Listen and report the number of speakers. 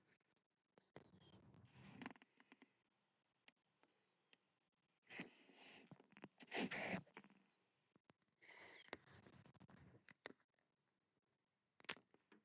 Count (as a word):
zero